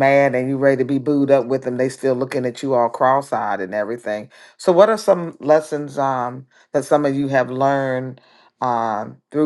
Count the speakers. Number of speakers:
one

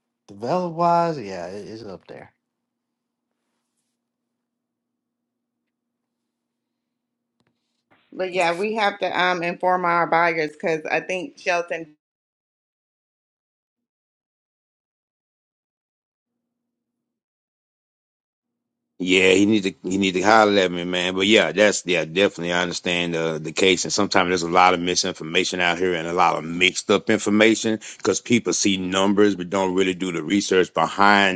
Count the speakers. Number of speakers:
three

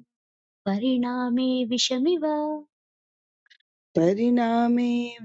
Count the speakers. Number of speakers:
two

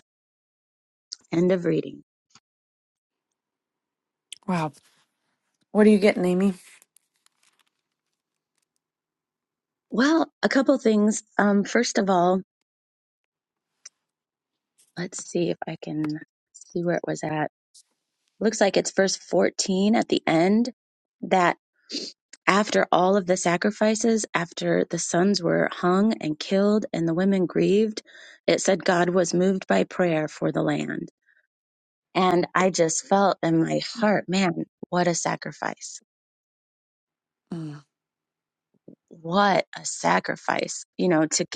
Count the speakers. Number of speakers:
two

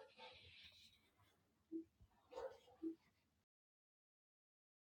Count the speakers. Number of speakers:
zero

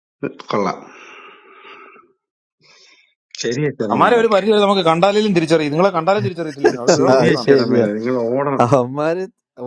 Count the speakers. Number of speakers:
three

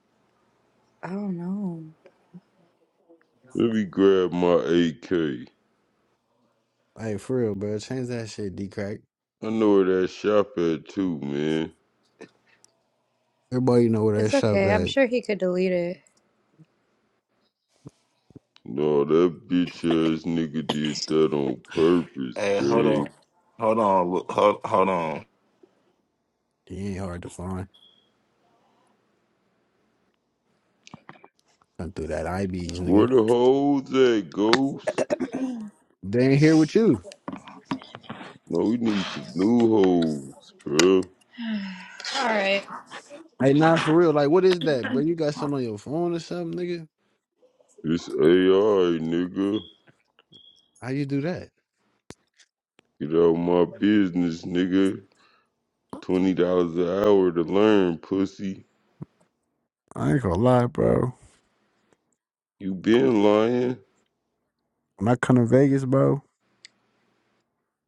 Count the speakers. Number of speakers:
four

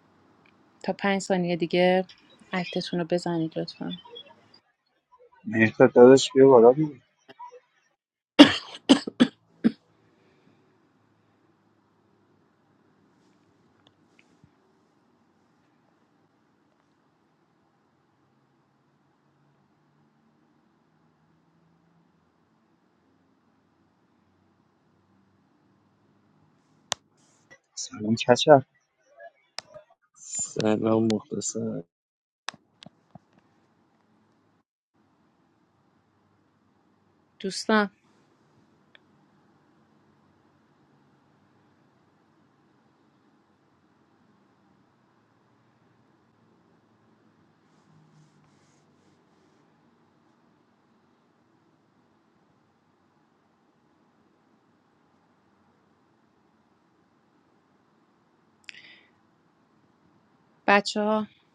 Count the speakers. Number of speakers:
three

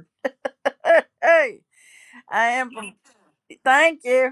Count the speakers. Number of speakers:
one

